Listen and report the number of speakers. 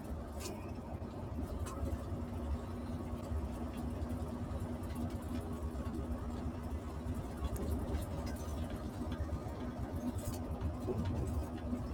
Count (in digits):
0